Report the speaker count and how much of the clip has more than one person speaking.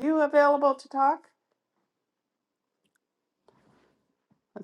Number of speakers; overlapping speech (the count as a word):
one, no overlap